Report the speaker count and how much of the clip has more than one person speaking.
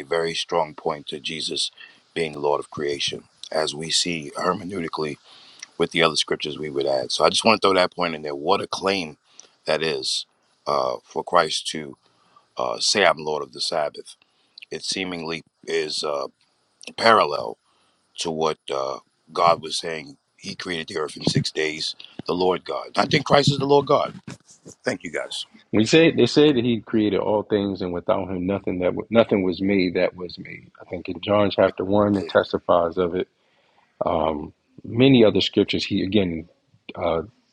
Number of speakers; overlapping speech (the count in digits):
2, no overlap